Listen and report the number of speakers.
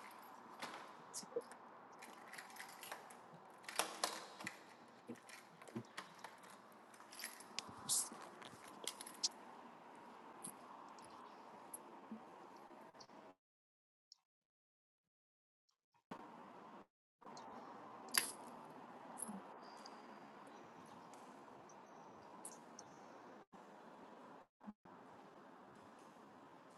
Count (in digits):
0